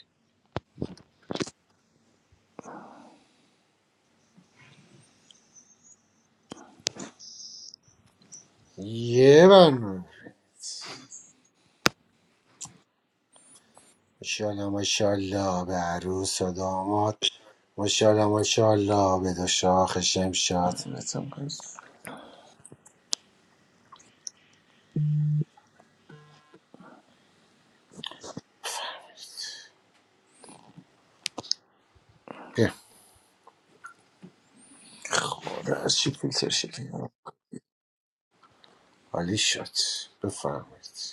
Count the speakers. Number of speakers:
2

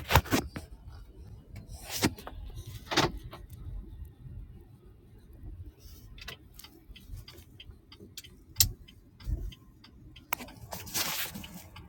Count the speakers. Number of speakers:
0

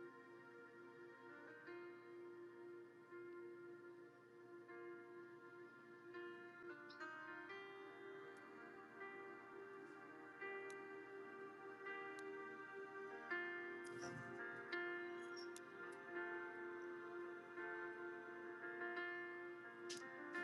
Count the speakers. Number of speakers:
0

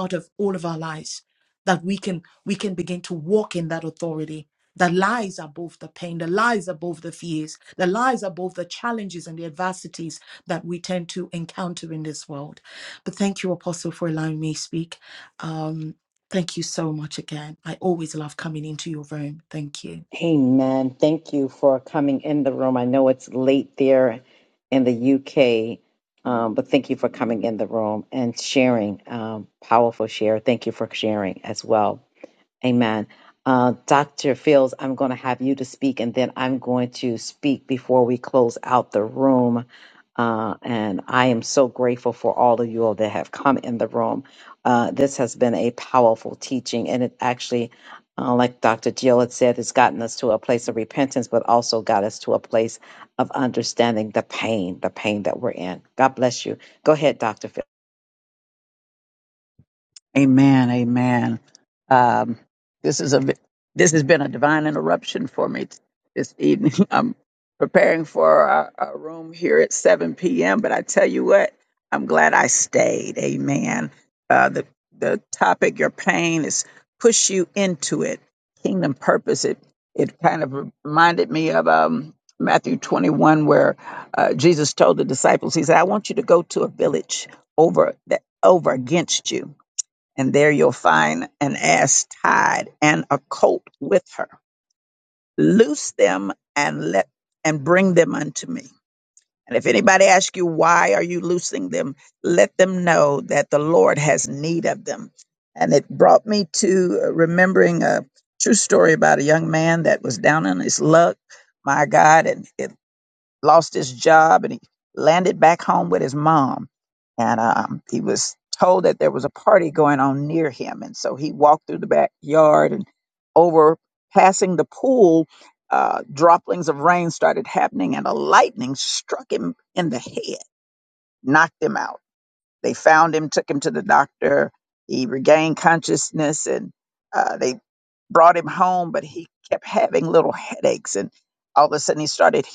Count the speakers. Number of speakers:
3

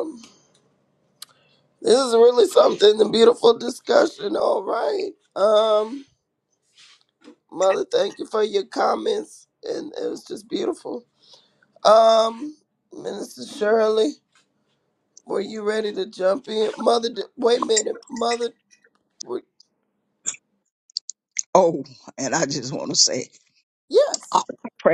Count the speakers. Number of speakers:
2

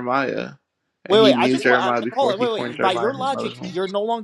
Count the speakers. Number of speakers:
2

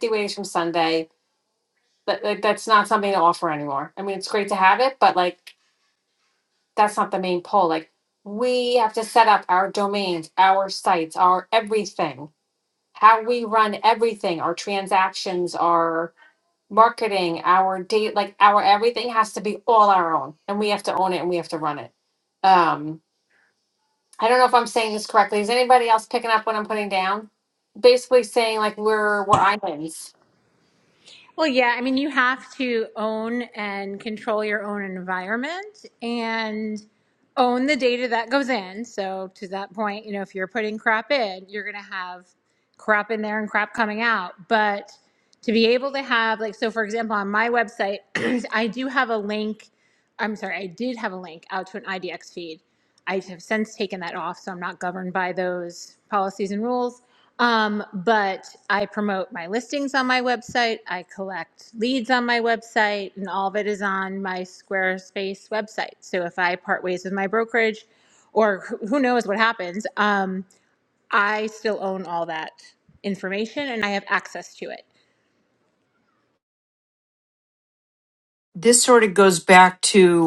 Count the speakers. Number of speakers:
3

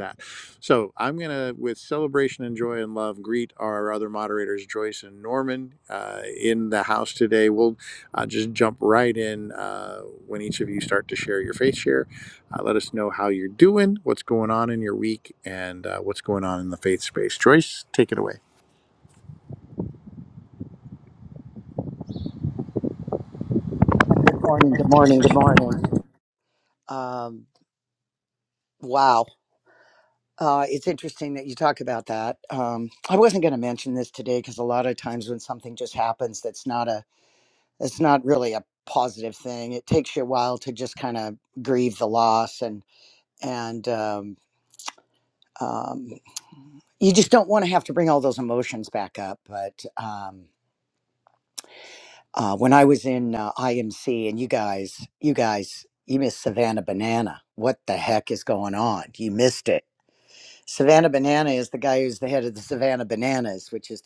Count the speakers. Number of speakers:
2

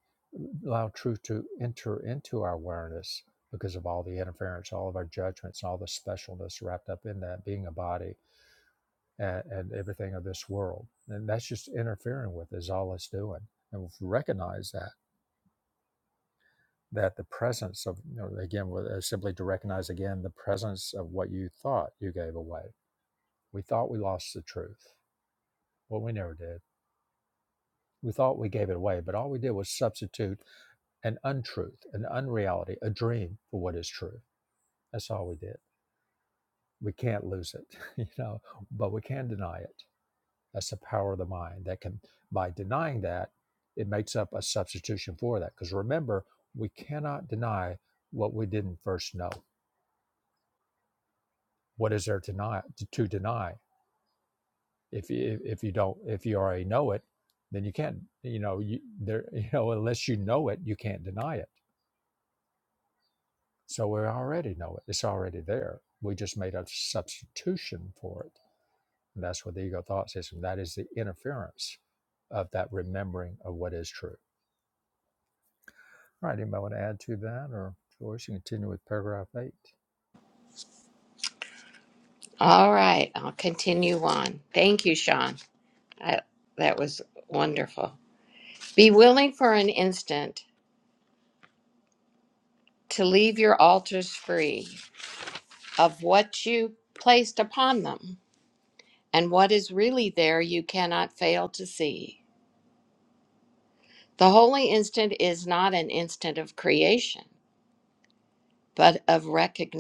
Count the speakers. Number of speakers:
2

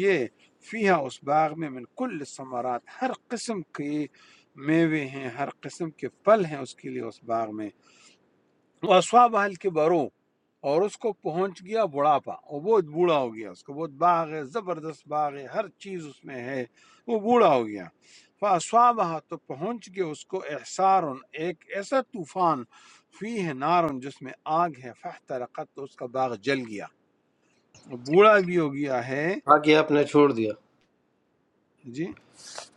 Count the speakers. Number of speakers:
2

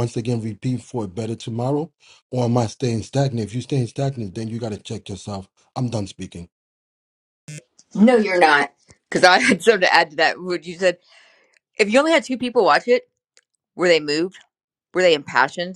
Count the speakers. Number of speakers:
2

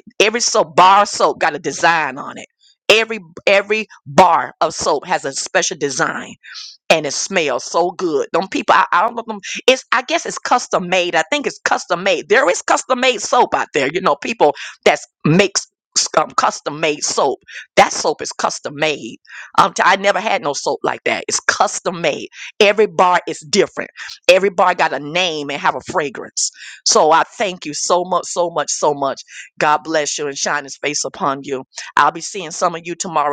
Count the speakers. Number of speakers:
1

